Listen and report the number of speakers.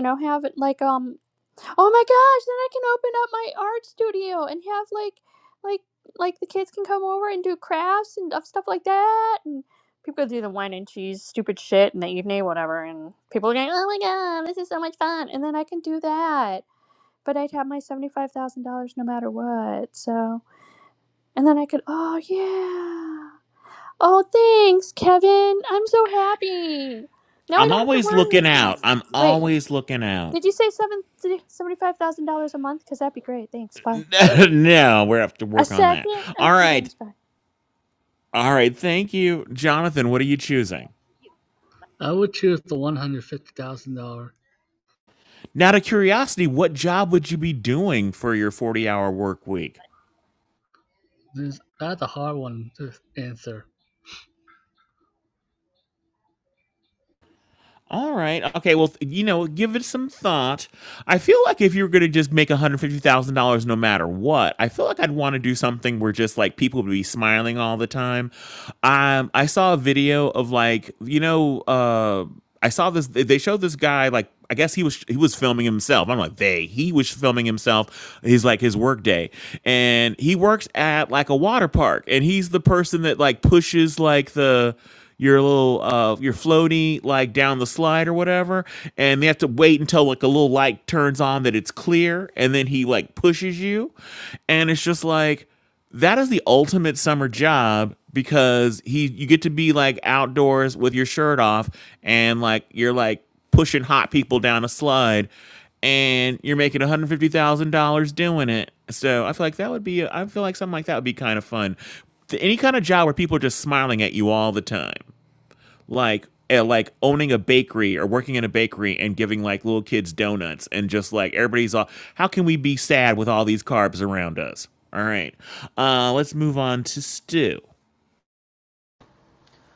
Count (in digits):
3